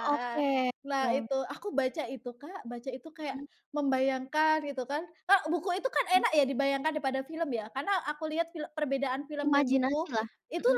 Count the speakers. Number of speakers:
2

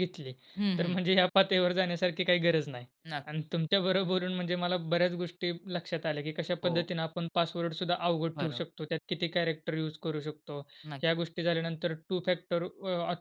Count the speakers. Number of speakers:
2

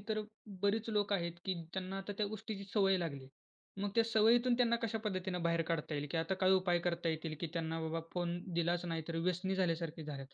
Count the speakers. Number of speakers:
1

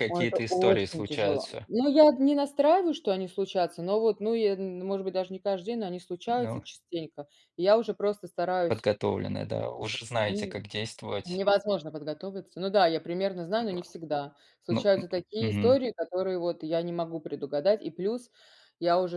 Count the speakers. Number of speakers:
2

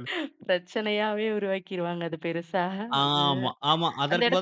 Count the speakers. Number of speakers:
2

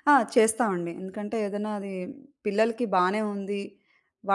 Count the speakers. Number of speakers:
1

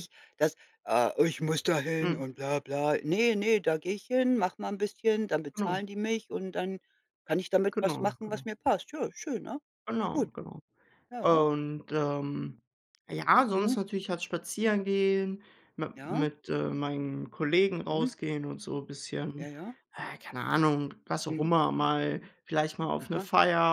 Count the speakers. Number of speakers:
2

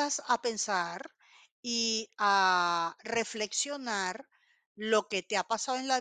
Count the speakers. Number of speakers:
1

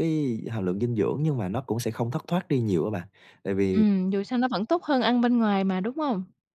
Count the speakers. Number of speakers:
2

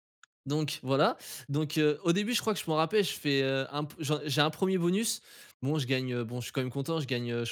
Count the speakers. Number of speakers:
1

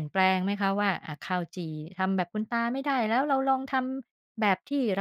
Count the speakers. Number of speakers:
1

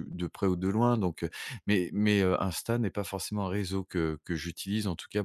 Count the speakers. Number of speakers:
1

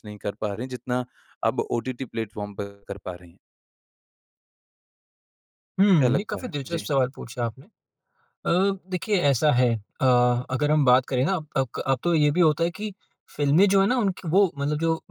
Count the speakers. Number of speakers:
2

